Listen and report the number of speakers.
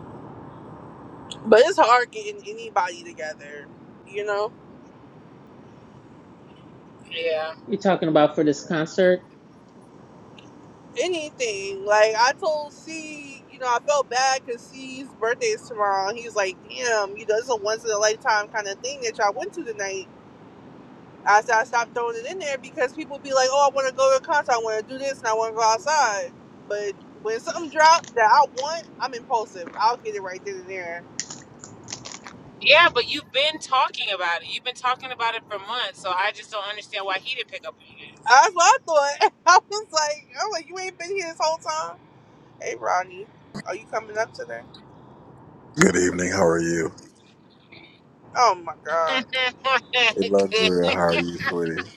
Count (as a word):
four